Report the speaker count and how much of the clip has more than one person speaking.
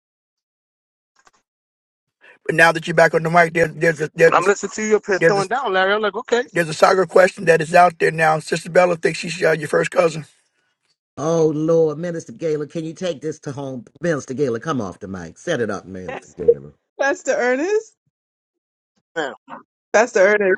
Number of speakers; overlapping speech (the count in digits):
4, about 2%